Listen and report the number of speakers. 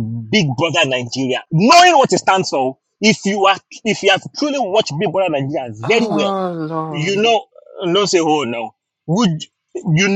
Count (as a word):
two